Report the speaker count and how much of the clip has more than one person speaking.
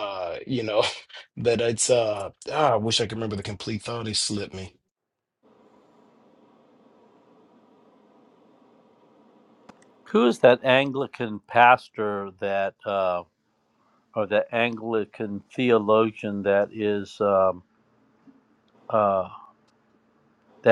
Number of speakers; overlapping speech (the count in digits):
2, no overlap